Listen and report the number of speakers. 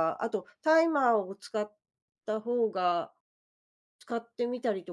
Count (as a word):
one